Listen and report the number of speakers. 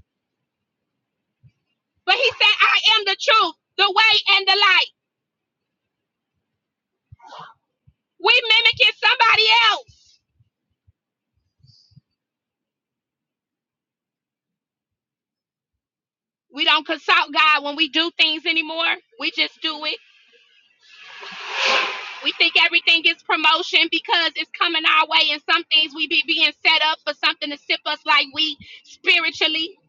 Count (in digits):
1